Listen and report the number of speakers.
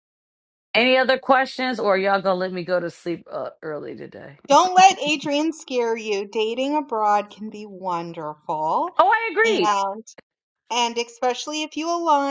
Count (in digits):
2